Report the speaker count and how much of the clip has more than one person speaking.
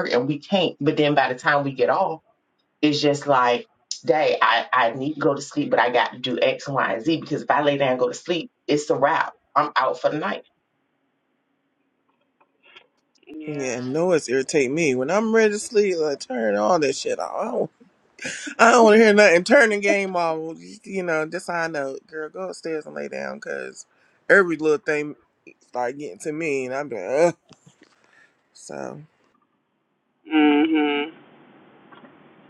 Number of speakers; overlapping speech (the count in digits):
3, about 1%